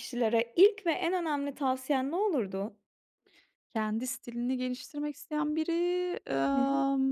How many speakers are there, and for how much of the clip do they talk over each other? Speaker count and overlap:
2, about 4%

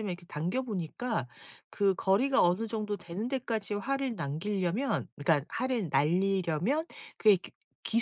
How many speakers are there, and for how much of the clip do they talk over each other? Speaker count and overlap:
1, no overlap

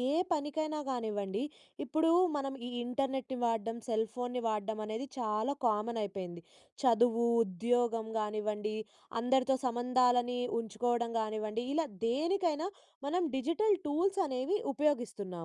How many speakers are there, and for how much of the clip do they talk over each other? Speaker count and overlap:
1, no overlap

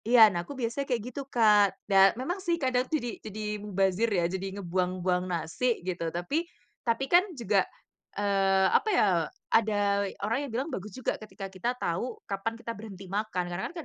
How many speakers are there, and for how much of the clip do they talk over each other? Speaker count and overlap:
1, no overlap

